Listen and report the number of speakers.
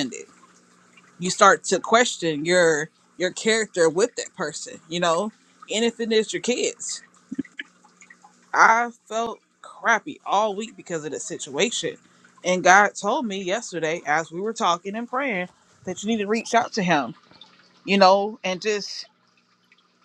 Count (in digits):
1